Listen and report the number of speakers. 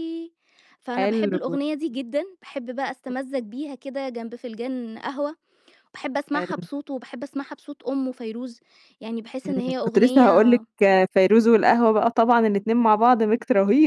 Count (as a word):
two